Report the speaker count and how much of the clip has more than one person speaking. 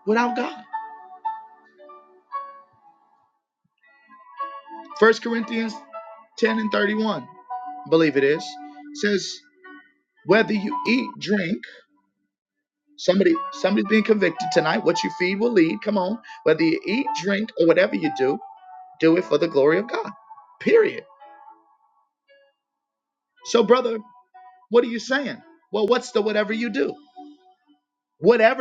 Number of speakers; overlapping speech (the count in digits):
1, no overlap